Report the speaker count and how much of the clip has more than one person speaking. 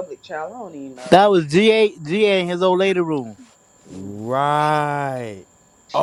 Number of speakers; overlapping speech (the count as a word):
three, about 7%